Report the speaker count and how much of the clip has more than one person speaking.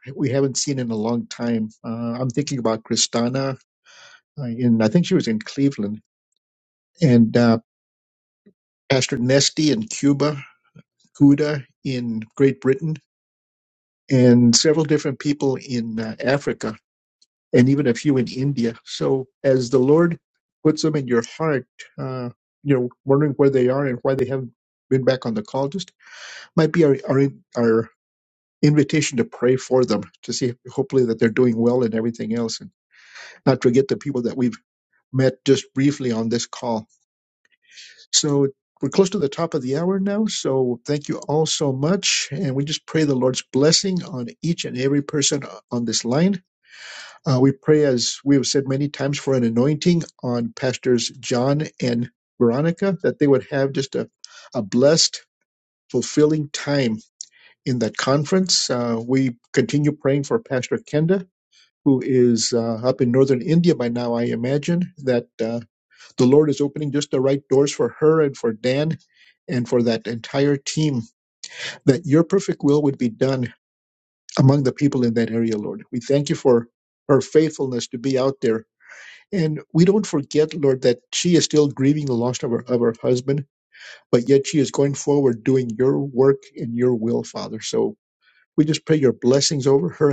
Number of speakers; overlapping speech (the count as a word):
one, no overlap